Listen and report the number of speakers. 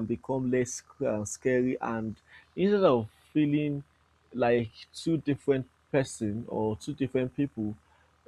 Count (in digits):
1